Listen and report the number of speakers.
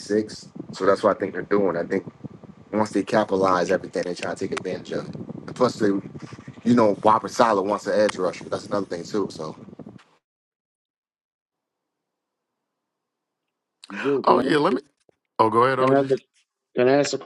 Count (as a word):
three